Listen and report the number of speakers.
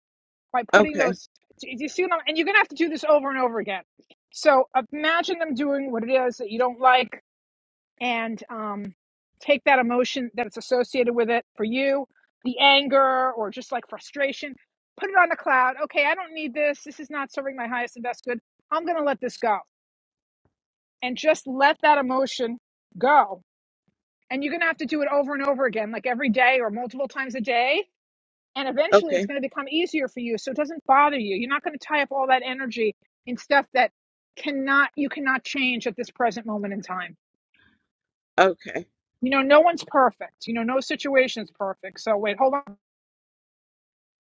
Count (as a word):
two